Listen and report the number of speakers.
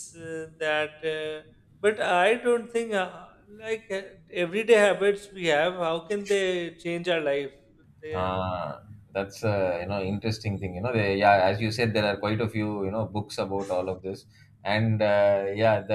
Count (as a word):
two